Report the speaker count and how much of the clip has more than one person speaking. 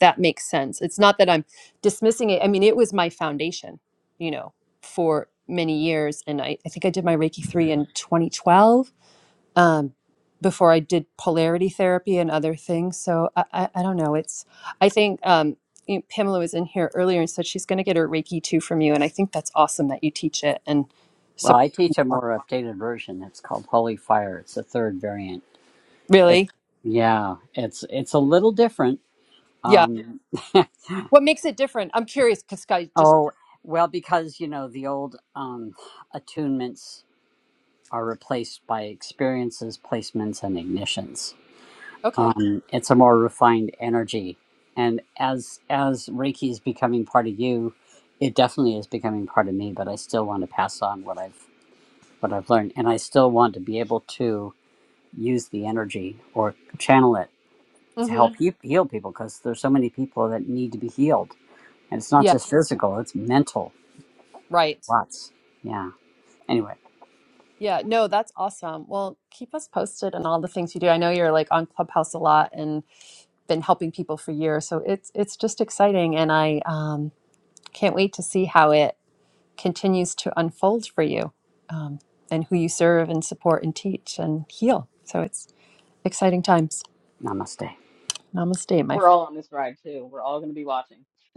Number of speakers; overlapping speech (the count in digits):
3, about 2%